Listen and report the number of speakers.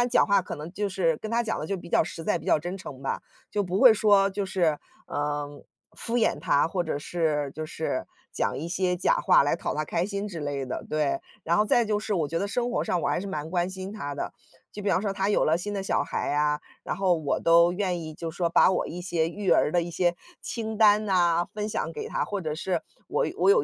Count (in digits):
1